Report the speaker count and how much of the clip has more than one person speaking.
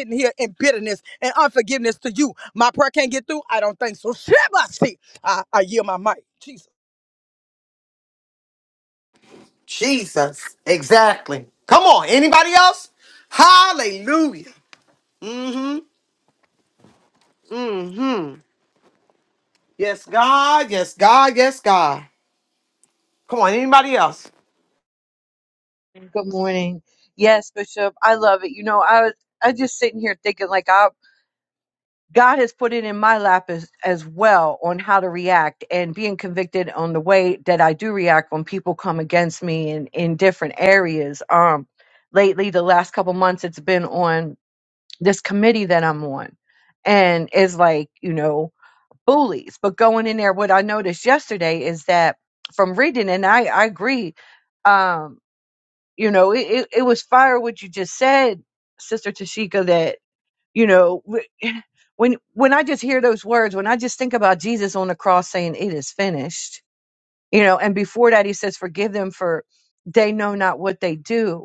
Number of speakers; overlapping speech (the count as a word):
three, no overlap